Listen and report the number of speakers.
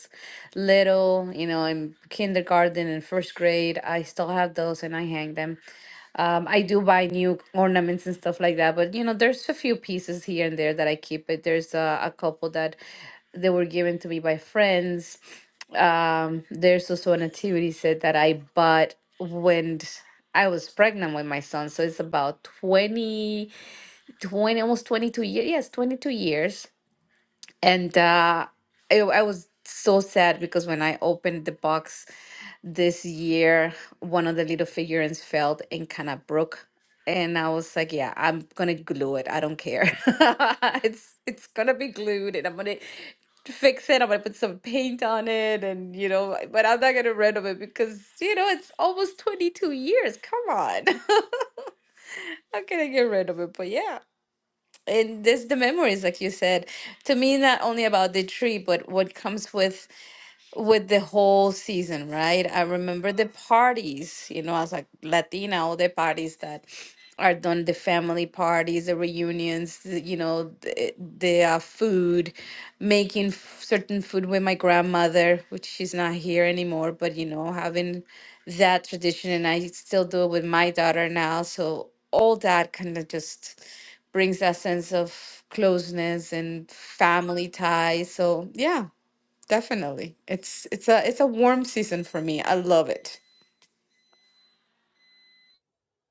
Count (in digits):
1